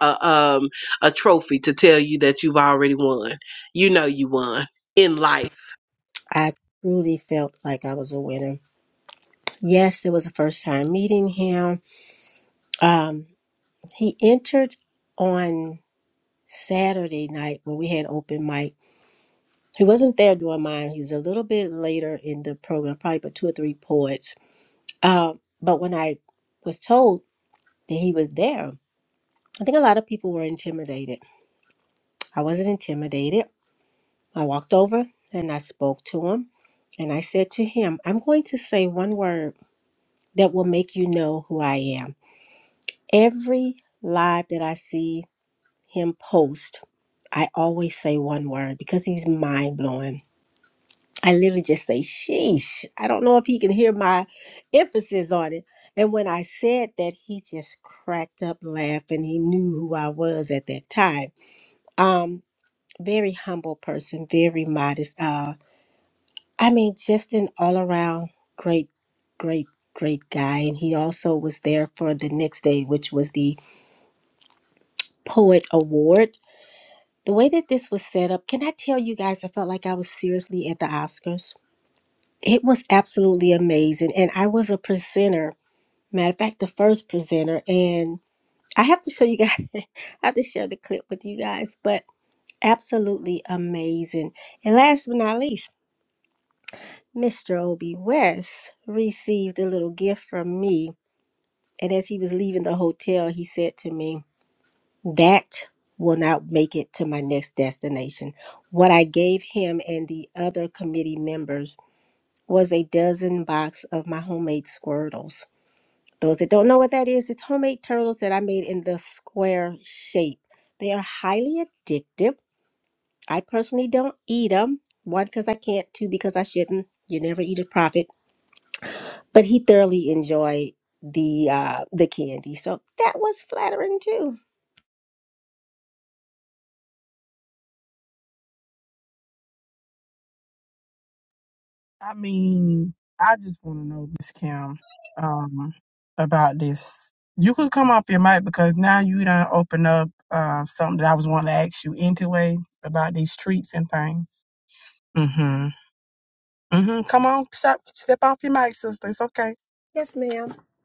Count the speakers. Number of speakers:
3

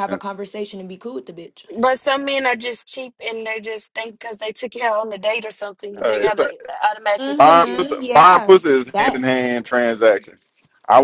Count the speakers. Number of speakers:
3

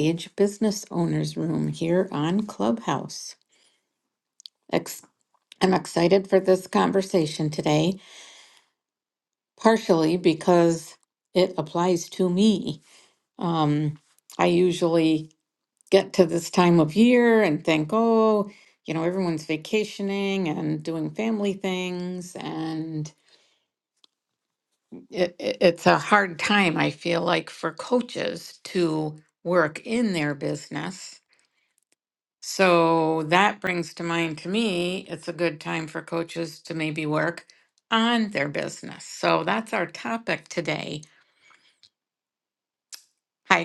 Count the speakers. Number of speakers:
1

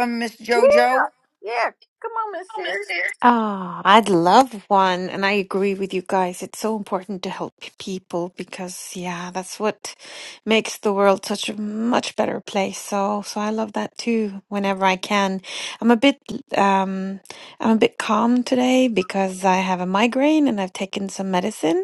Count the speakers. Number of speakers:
3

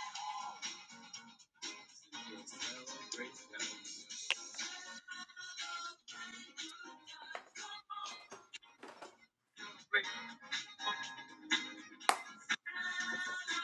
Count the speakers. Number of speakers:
0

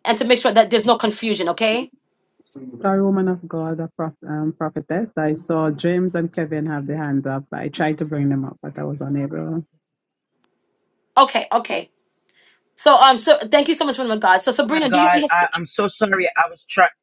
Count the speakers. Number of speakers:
3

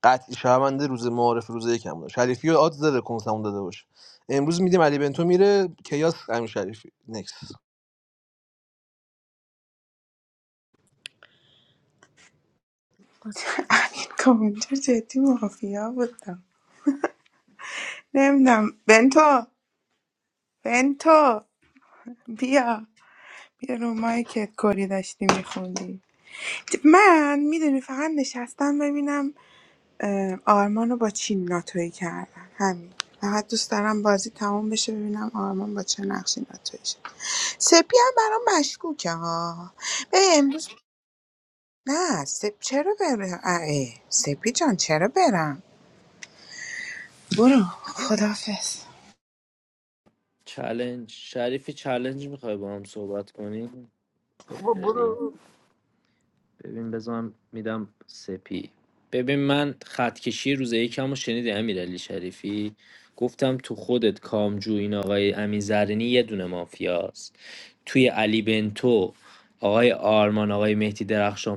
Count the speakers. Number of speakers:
3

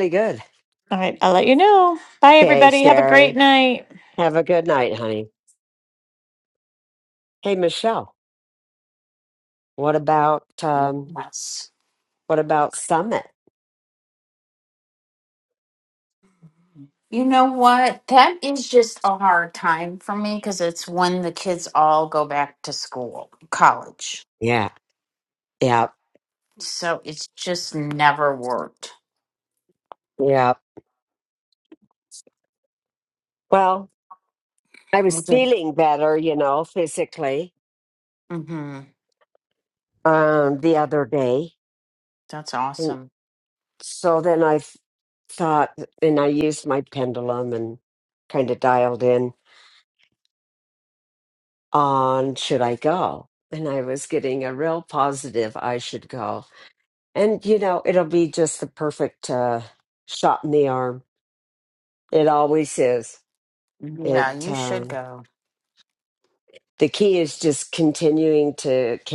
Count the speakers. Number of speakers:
3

